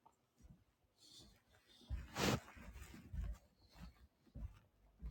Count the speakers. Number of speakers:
0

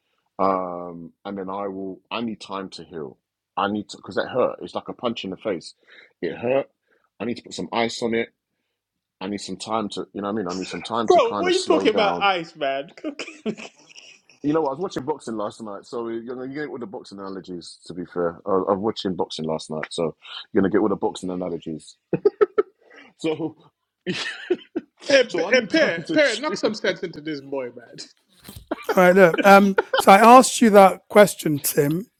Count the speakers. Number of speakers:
3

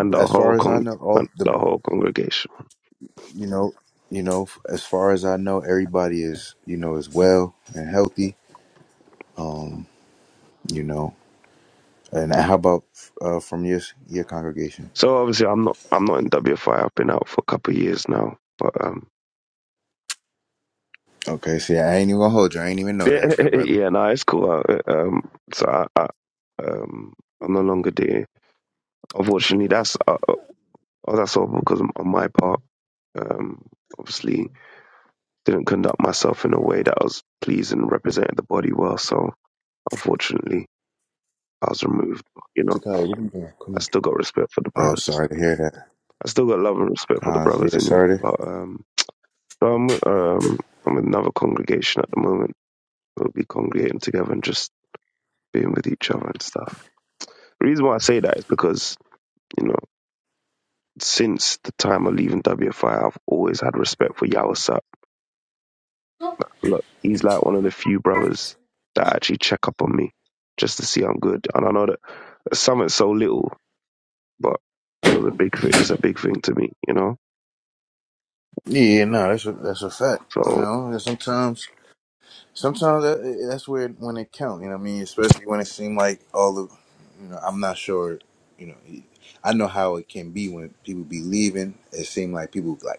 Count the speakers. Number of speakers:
2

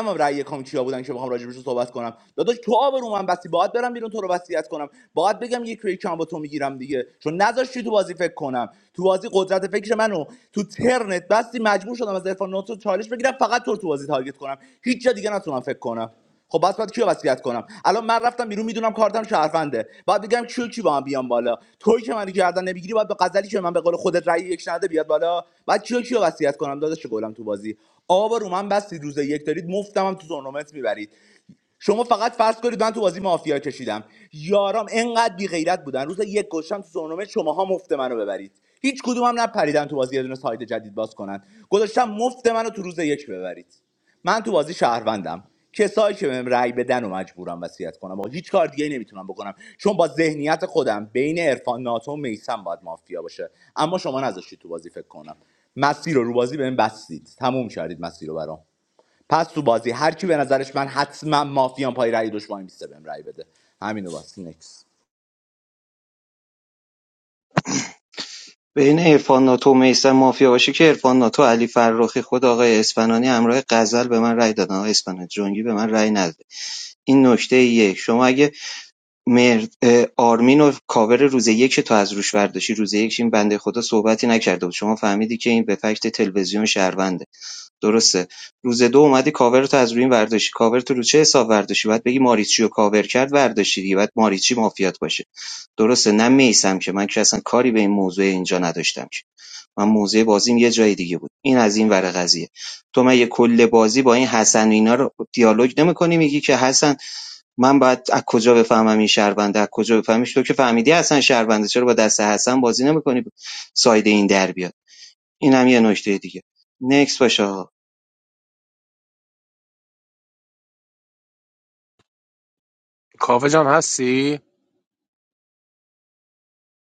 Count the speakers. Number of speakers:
3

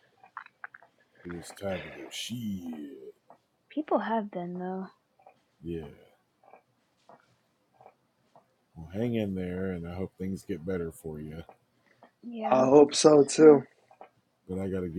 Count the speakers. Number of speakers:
3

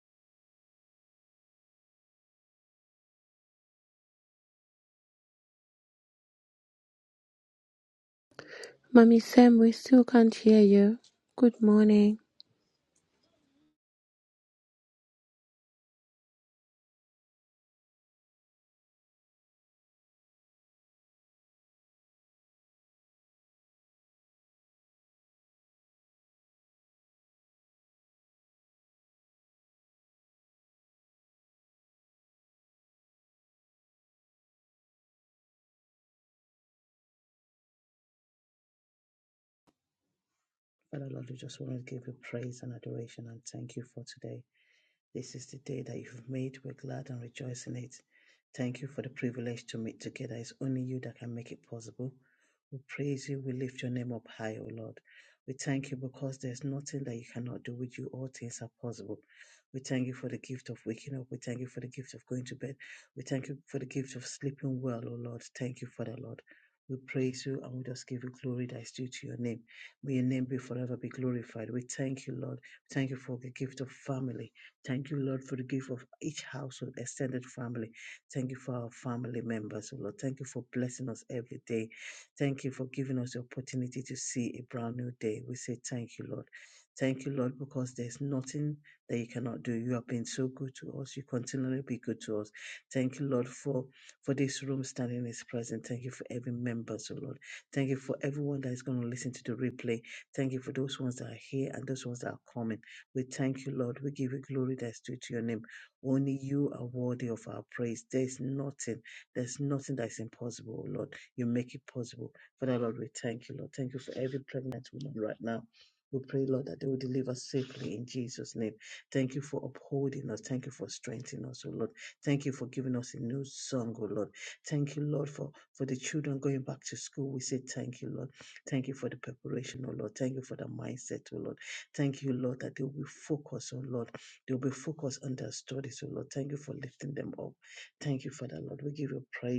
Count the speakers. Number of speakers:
2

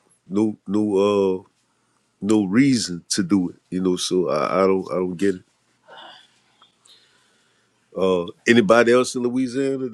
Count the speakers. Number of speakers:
1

